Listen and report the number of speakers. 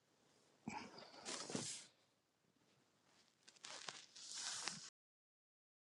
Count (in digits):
0